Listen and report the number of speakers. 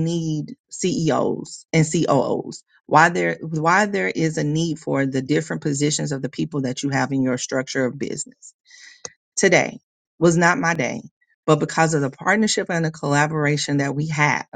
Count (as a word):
one